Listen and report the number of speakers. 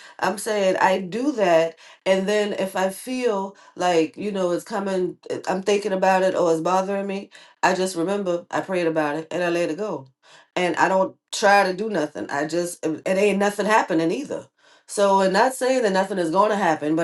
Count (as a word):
one